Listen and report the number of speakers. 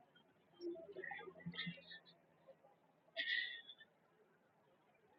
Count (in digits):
0